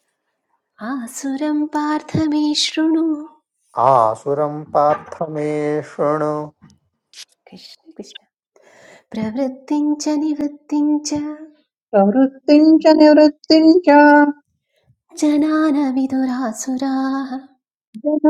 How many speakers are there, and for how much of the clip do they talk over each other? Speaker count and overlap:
3, no overlap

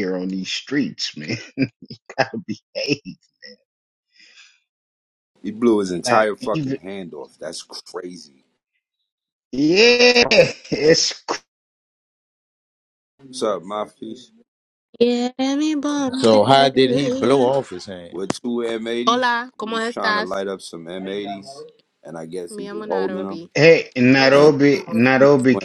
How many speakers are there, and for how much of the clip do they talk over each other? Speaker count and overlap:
4, about 15%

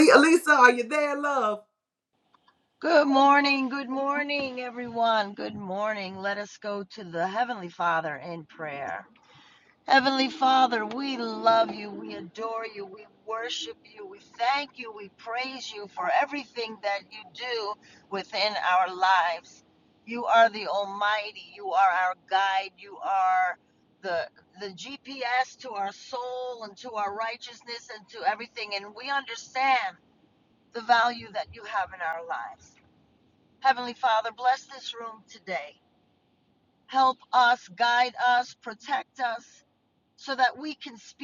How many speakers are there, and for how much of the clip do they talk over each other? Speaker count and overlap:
2, no overlap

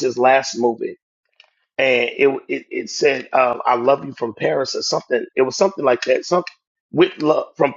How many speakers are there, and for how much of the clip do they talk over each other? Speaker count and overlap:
1, no overlap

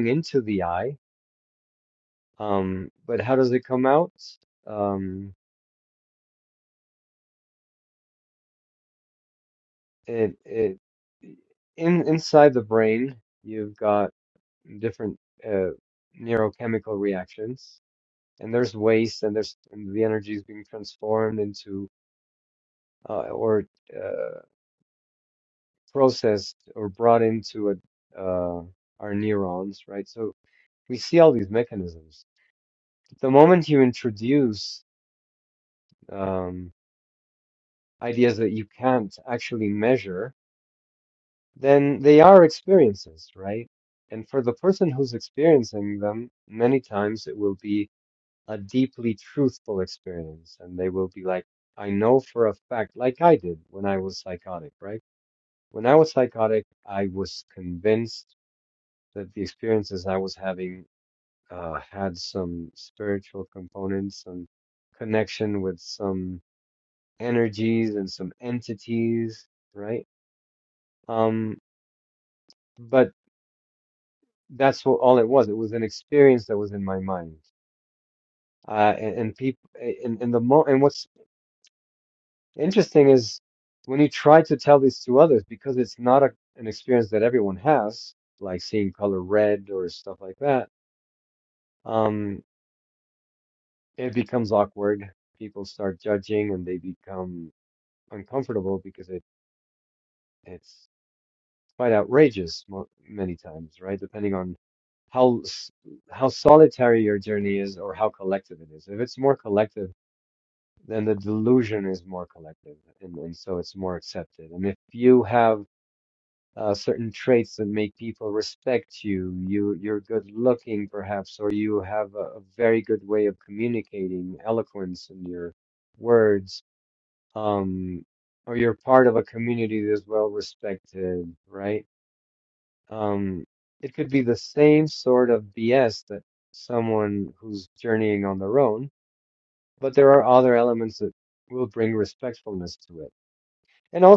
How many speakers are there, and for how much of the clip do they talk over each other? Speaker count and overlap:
1, no overlap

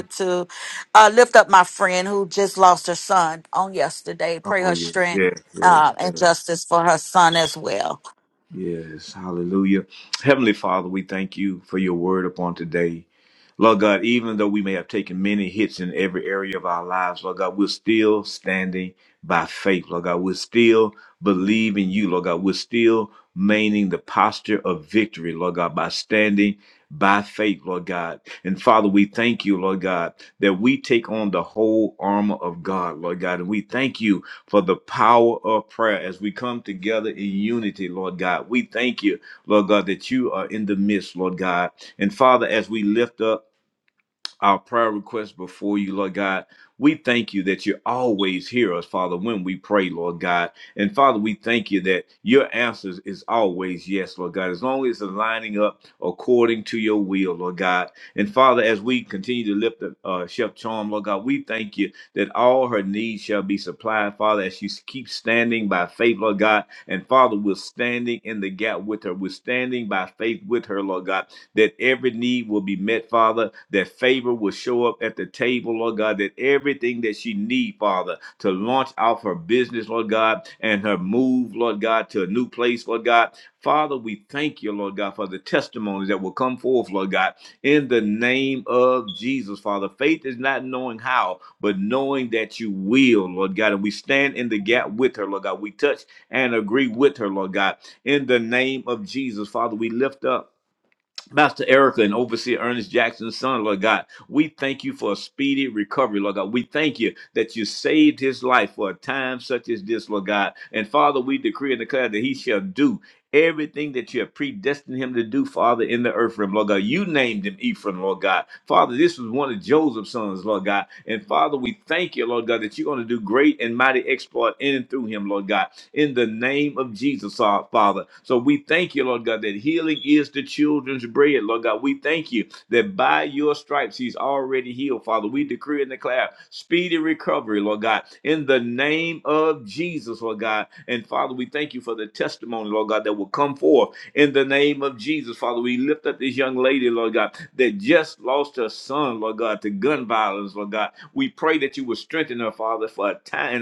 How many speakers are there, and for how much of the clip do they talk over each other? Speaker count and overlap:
2, about 1%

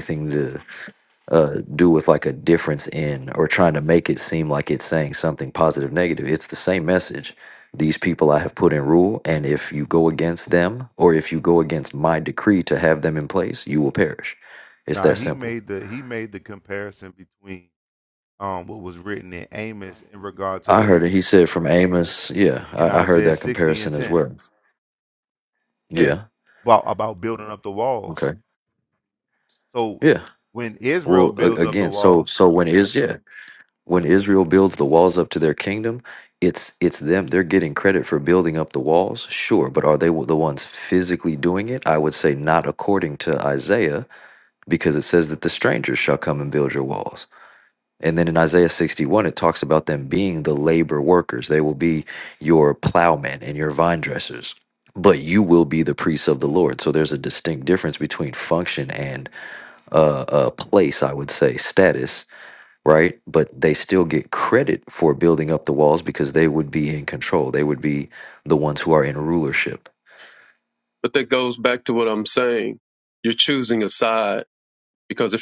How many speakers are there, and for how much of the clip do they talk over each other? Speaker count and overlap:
3, about 5%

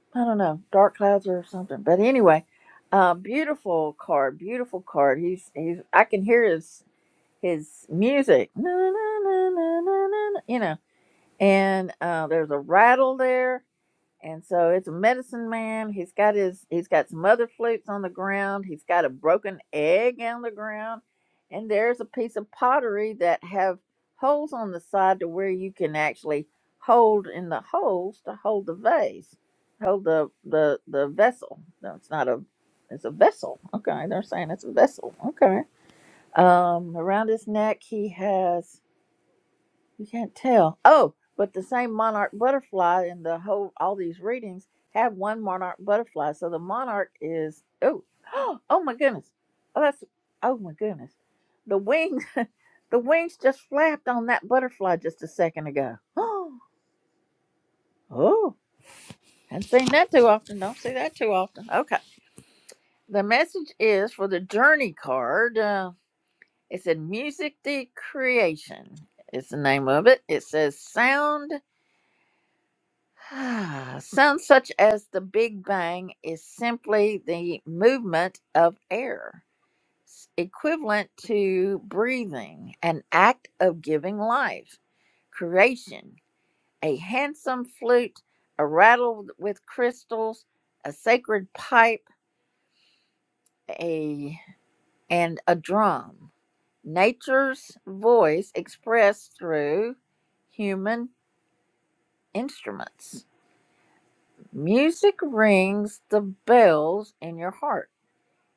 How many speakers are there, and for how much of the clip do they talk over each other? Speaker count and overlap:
1, no overlap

